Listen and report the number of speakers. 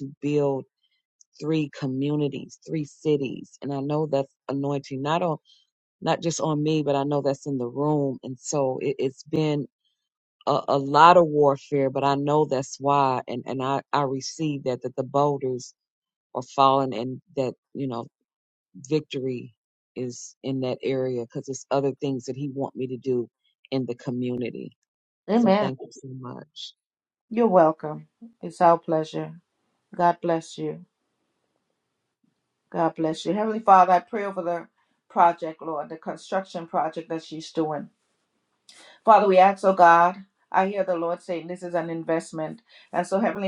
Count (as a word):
two